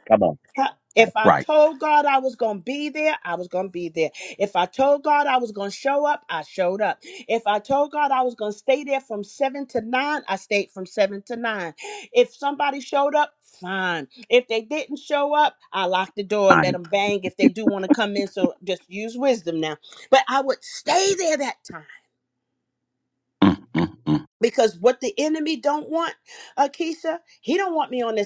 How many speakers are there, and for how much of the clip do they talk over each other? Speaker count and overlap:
2, about 3%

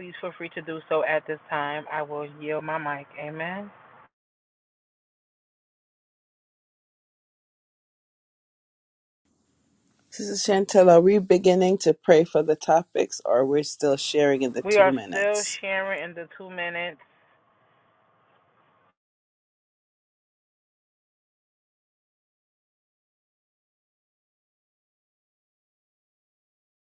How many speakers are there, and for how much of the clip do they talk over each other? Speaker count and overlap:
2, about 2%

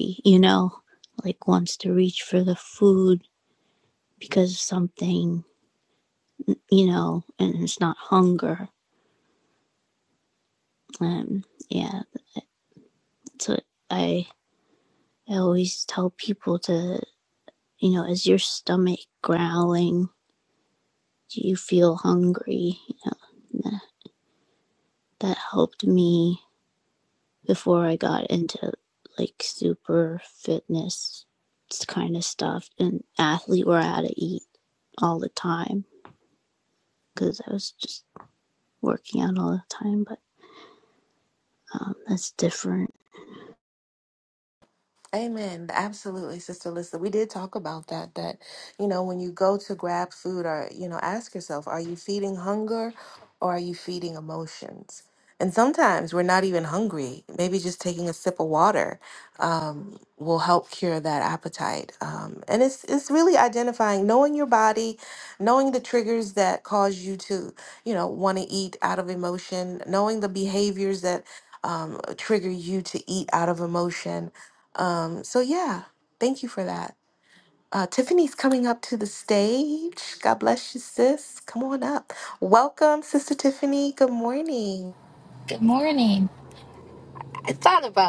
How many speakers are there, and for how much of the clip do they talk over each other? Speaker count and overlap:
3, no overlap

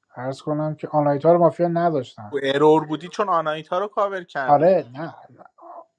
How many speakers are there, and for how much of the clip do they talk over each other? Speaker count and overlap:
2, about 4%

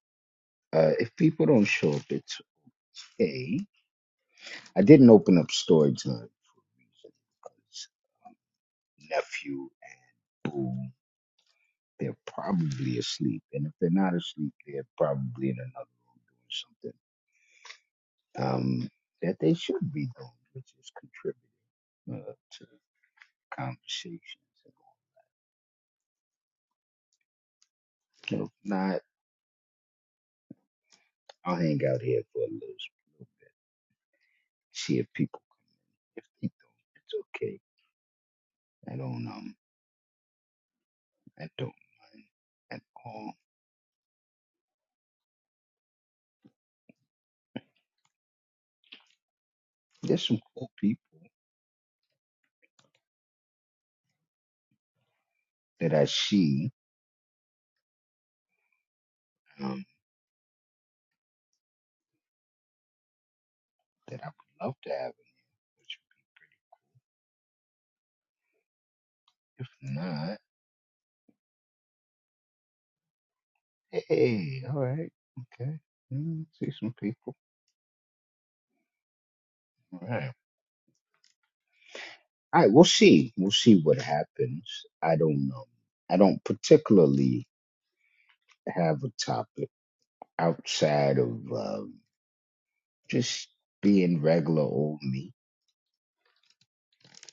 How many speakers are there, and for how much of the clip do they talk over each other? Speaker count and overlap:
1, no overlap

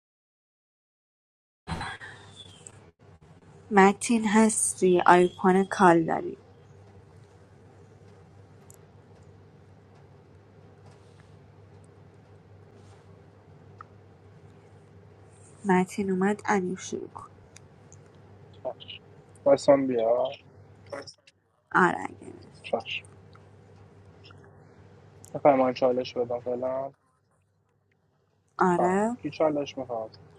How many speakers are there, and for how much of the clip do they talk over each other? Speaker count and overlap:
2, about 1%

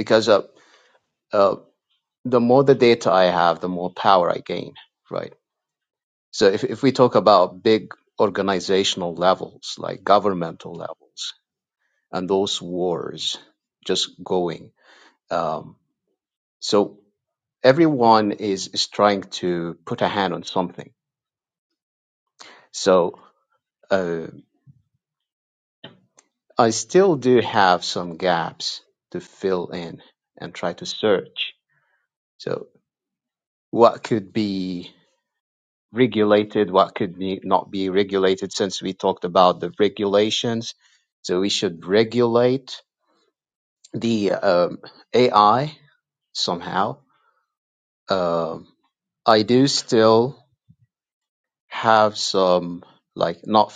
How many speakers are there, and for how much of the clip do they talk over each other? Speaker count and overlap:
1, no overlap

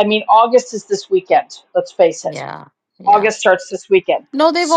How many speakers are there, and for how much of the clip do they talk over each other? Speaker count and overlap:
2, about 7%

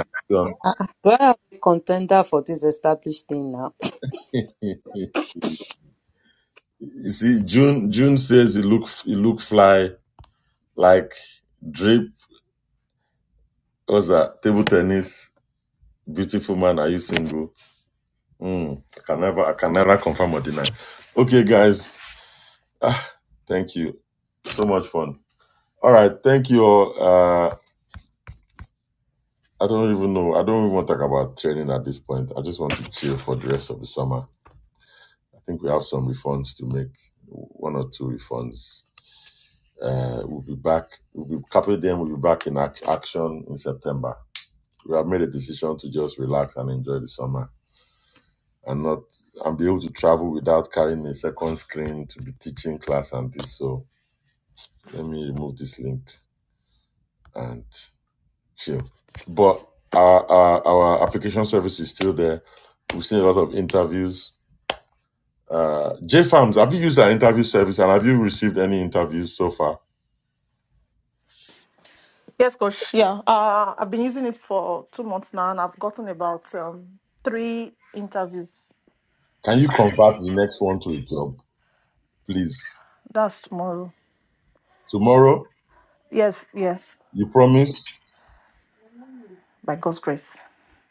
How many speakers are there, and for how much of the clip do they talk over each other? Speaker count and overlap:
3, no overlap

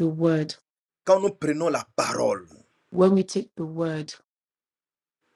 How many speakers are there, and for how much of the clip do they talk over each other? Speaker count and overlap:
2, no overlap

